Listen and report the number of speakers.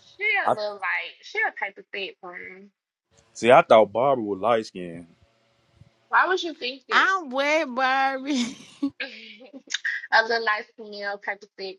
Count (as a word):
three